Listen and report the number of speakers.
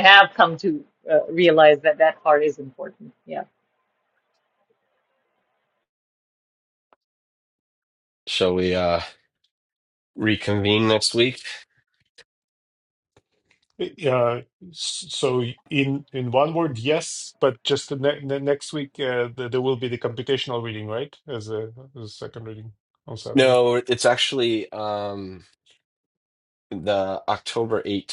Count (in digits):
3